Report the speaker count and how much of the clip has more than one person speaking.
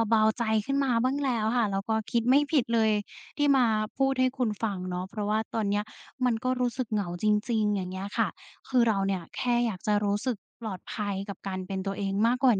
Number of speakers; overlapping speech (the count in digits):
1, no overlap